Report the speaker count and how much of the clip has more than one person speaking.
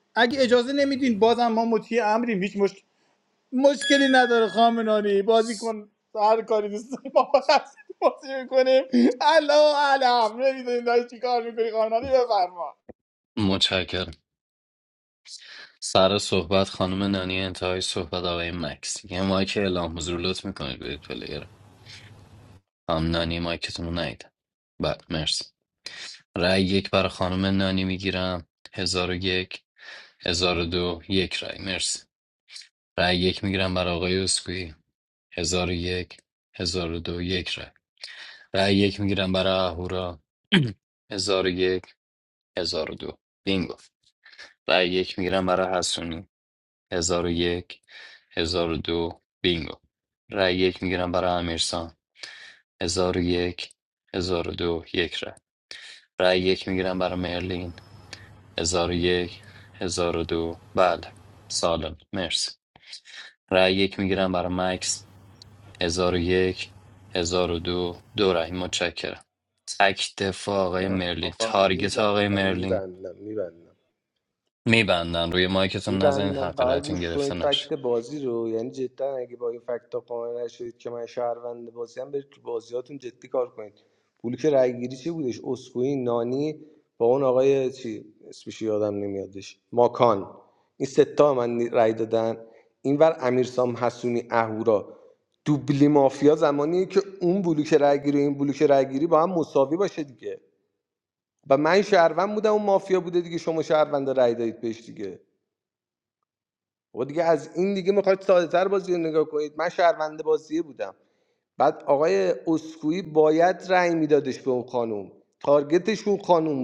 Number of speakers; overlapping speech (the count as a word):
three, about 3%